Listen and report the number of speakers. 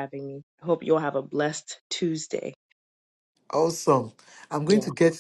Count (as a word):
two